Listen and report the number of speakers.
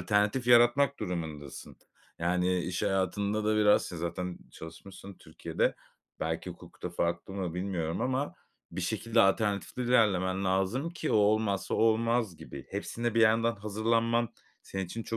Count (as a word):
one